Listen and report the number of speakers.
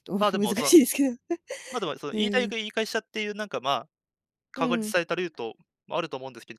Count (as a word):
two